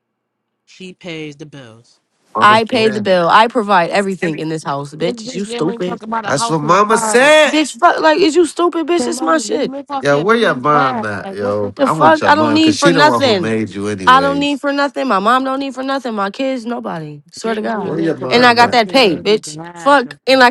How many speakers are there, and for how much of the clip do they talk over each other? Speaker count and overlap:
3, about 48%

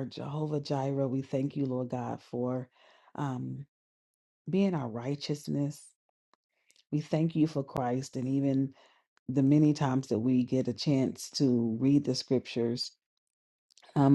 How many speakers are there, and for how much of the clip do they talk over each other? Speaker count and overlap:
1, no overlap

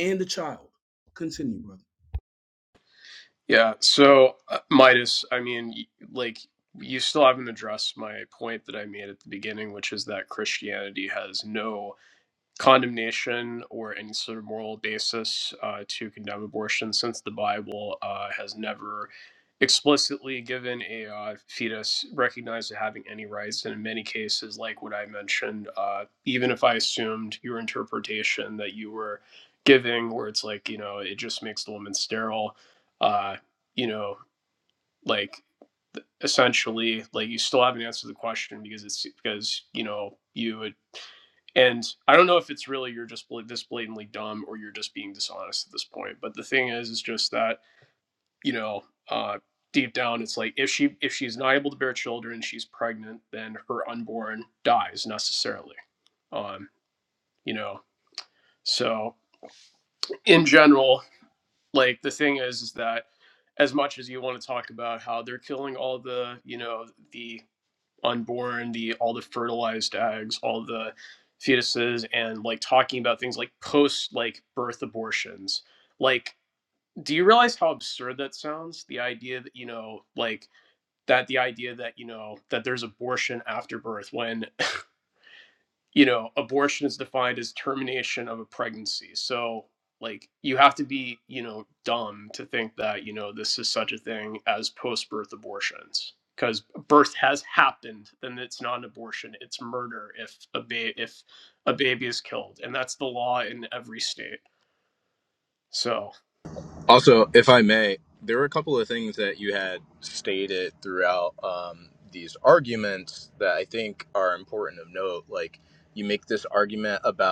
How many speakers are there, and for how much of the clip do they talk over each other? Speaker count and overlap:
3, no overlap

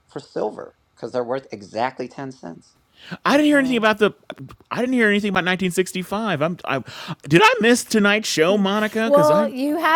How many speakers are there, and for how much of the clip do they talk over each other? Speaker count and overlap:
3, about 9%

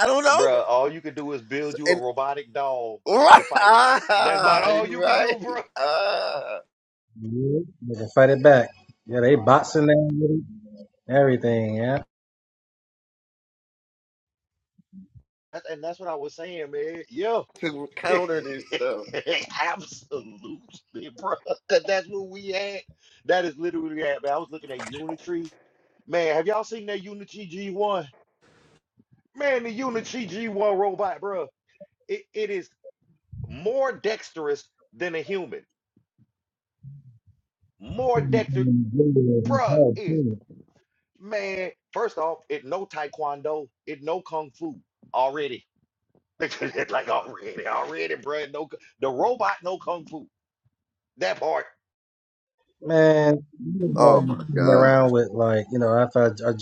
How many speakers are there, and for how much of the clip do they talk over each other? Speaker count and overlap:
3, about 6%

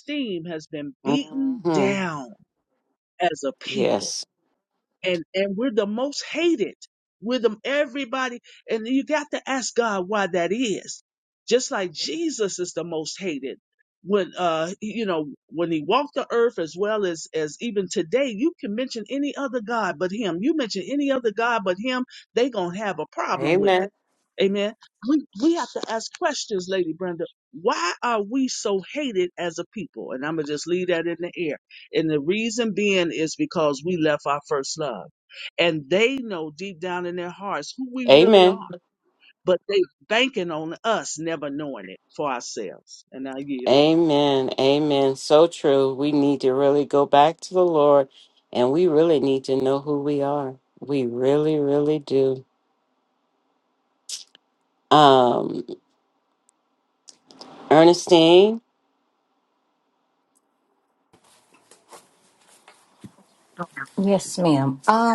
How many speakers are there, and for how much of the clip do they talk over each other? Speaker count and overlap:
3, about 4%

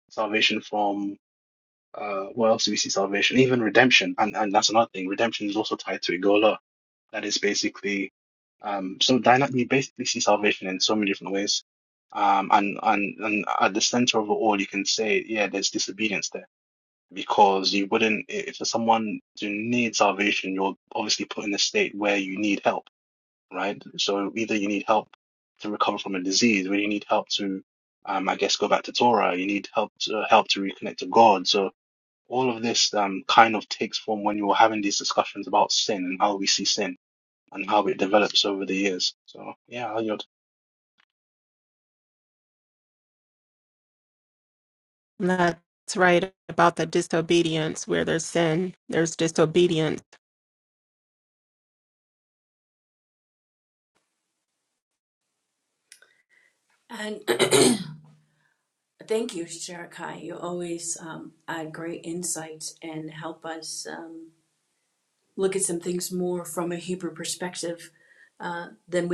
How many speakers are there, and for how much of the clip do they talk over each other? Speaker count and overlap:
3, no overlap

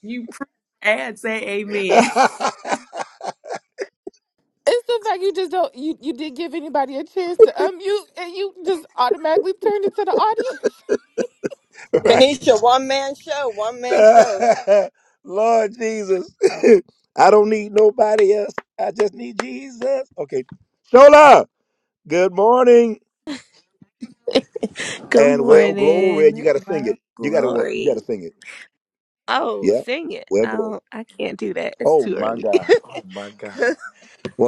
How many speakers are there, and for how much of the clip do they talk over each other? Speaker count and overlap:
5, about 12%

